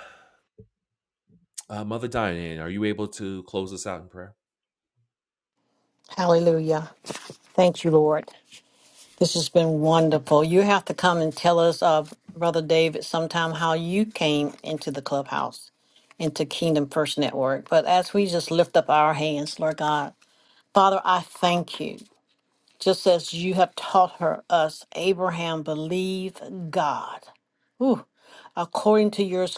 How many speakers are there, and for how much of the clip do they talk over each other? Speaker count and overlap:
two, no overlap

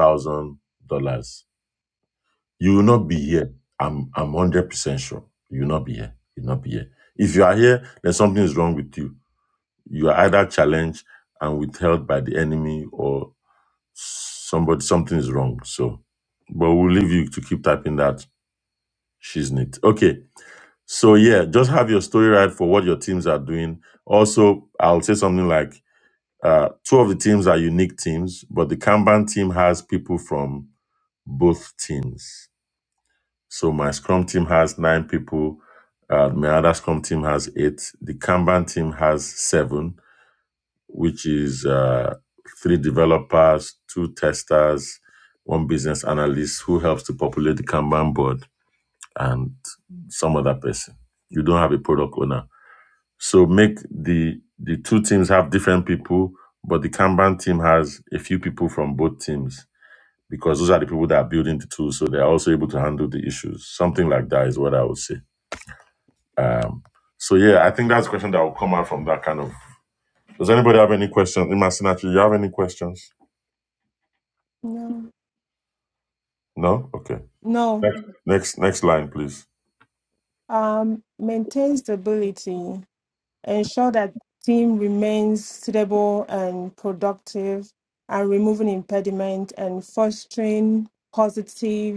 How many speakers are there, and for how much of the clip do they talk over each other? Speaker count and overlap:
two, no overlap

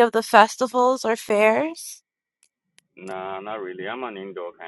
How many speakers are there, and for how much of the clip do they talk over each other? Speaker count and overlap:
two, no overlap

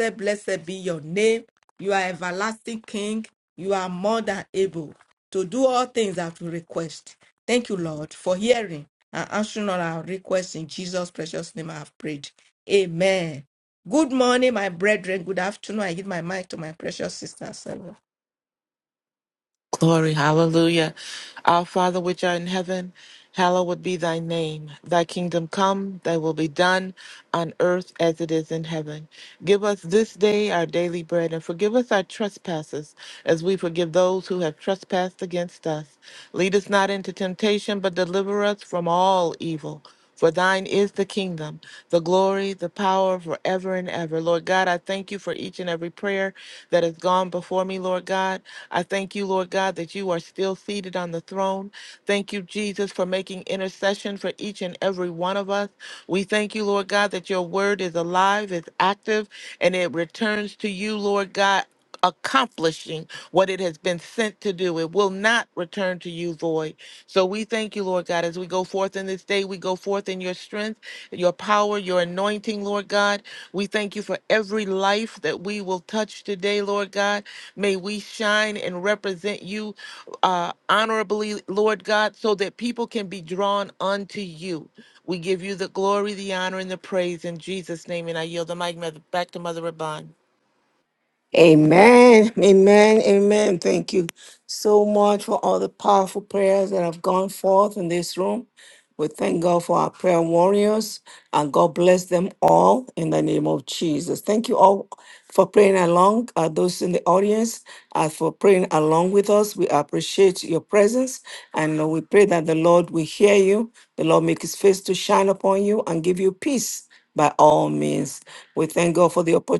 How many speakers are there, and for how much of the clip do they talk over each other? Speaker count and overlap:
three, no overlap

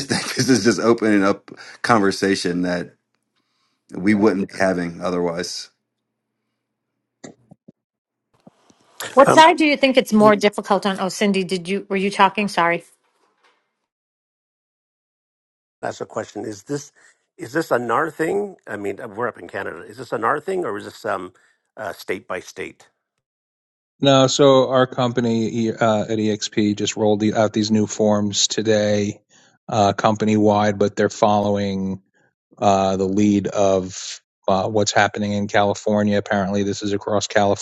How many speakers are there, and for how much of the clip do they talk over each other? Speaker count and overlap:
four, about 1%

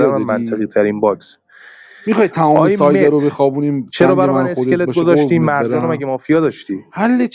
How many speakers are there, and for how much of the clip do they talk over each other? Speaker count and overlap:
two, about 48%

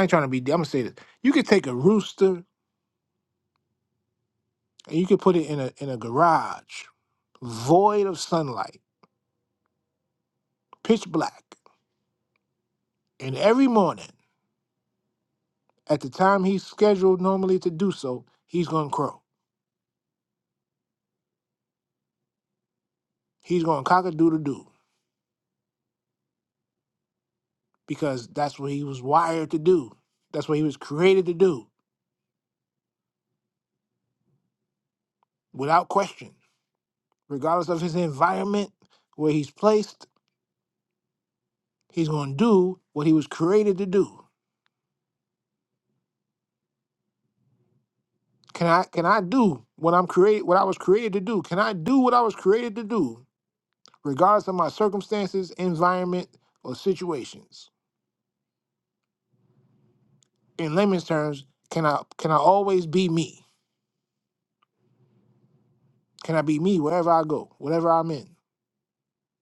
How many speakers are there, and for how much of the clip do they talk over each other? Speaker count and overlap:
one, no overlap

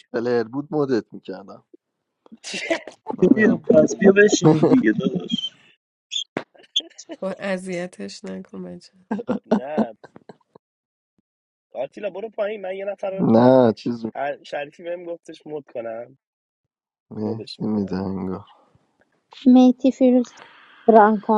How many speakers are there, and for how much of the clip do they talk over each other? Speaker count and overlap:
five, about 5%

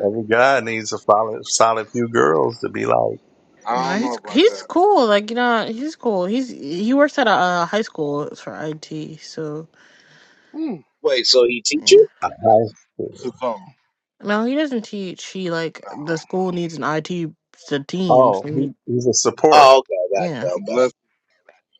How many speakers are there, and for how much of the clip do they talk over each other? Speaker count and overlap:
four, about 12%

